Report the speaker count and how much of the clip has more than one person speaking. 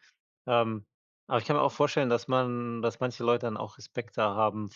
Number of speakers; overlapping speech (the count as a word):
one, no overlap